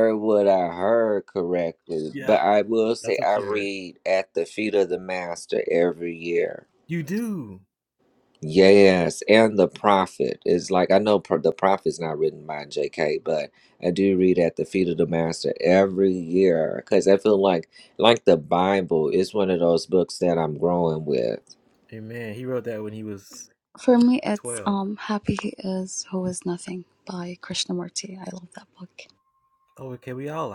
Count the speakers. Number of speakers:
three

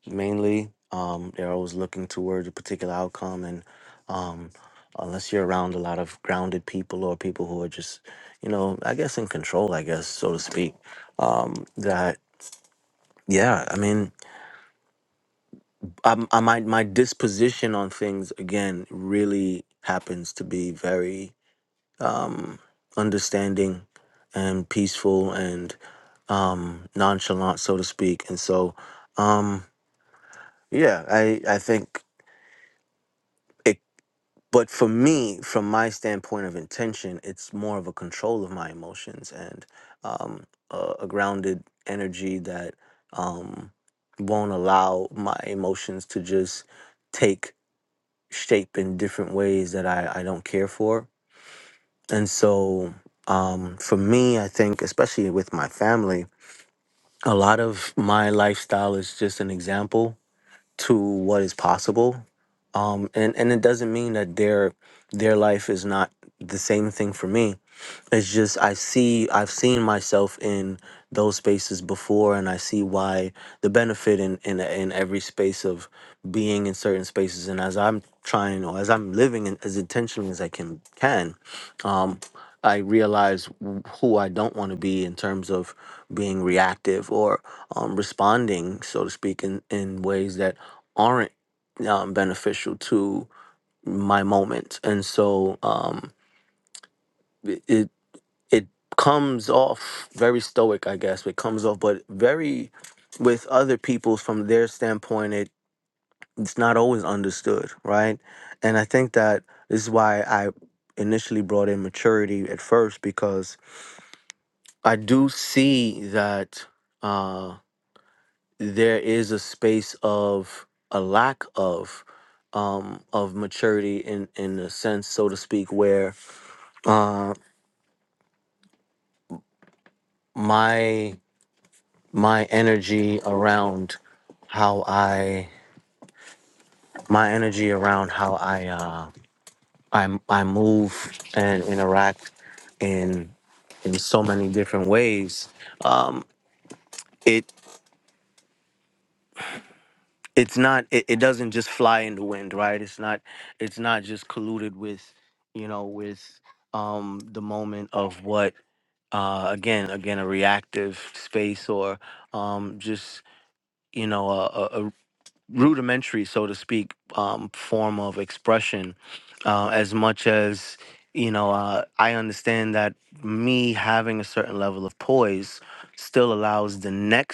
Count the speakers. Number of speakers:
one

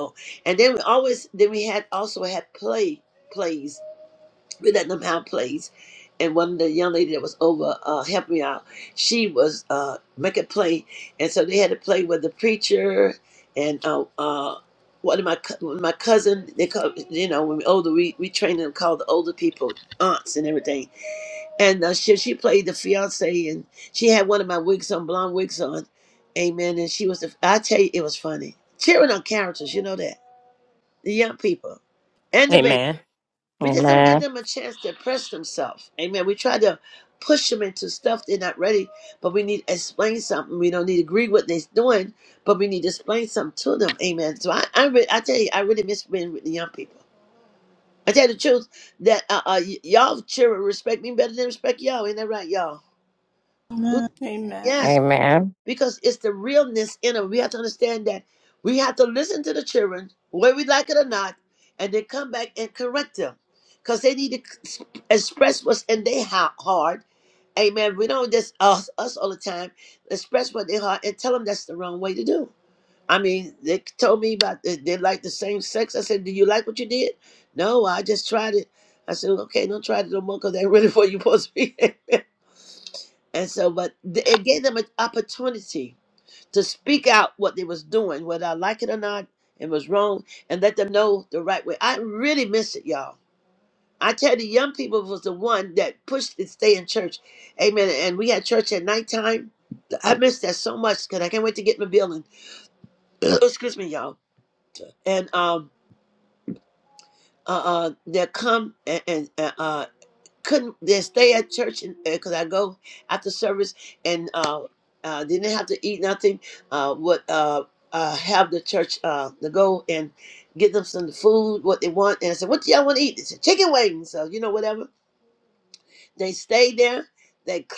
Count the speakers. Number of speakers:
three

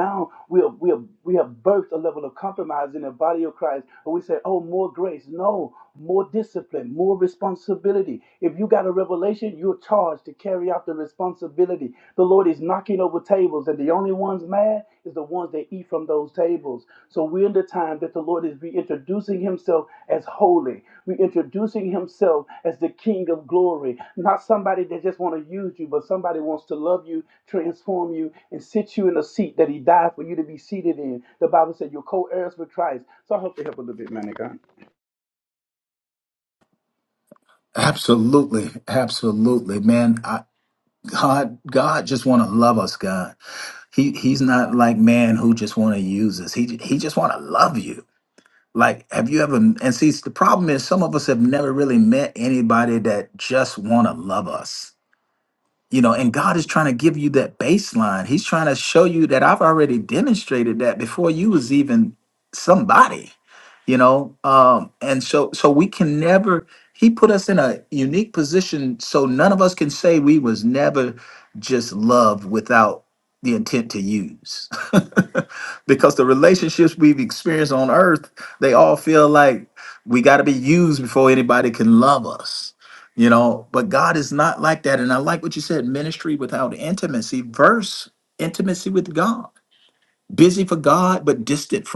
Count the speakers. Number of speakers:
two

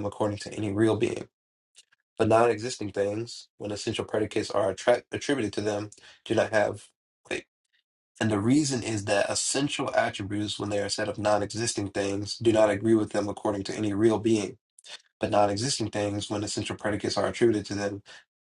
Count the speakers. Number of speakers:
one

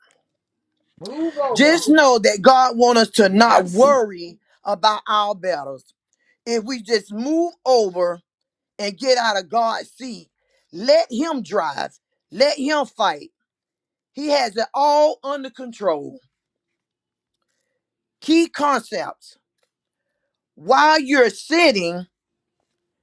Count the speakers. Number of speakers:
two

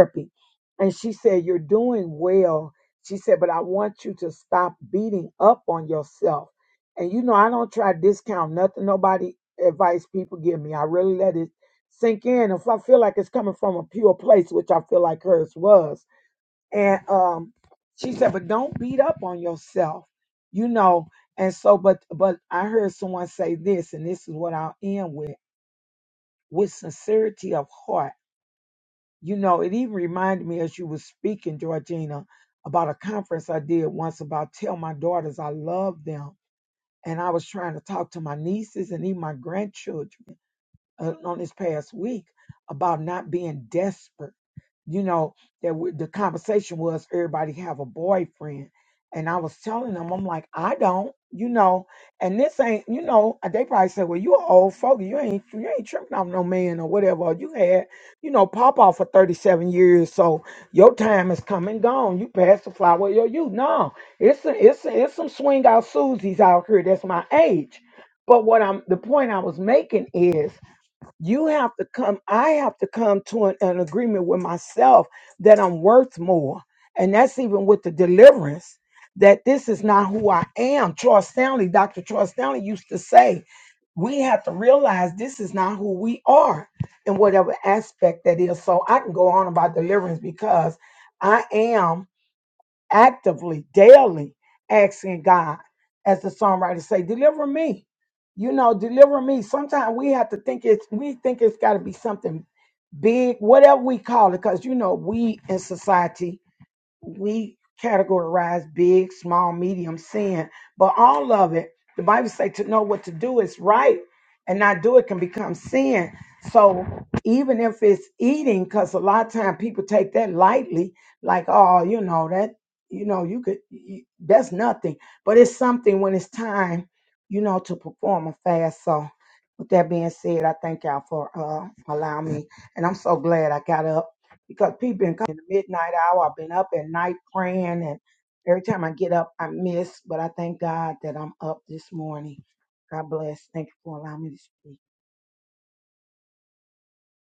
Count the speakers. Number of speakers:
one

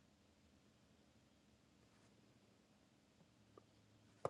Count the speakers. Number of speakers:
zero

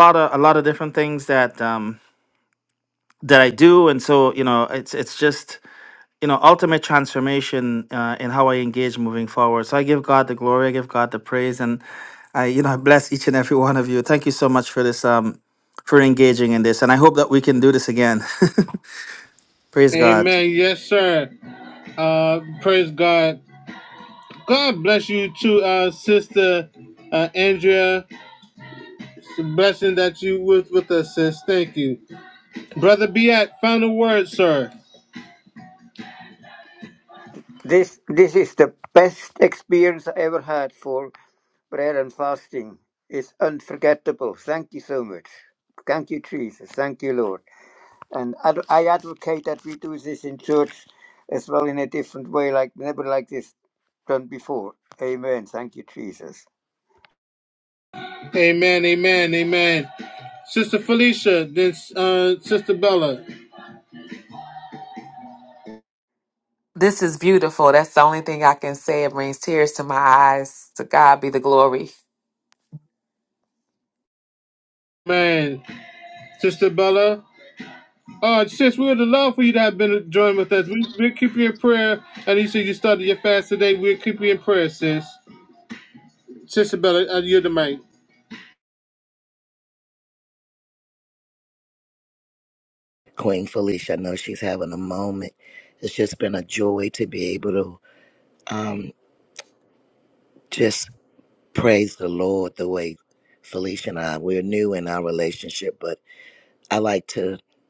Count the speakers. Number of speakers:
five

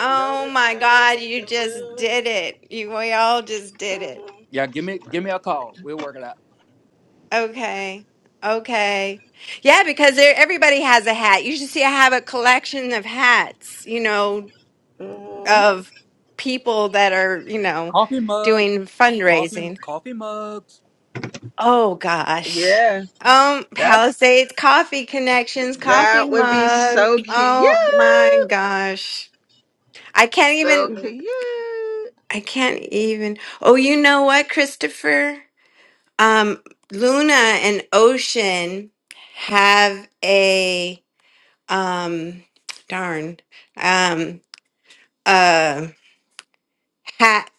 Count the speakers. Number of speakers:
three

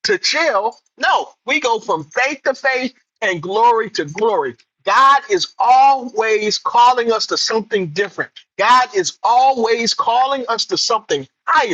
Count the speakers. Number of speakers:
one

